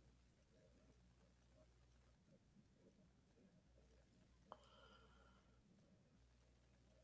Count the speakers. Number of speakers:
zero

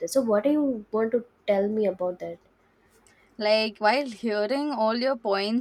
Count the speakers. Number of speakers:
two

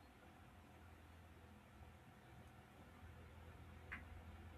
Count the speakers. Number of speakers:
zero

